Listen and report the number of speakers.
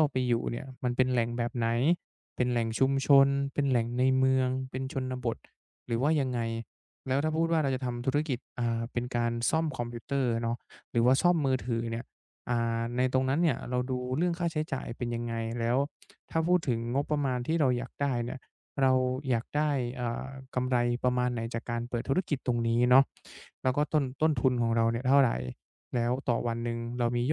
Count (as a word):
one